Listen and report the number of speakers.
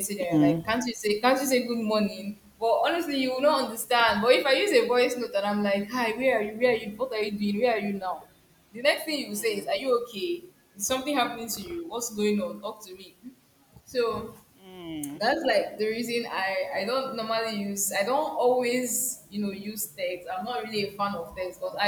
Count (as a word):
two